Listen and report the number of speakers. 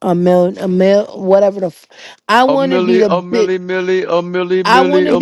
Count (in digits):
2